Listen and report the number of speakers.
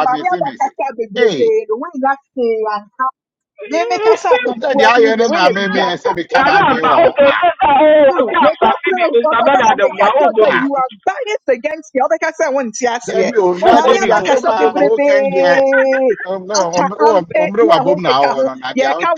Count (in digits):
3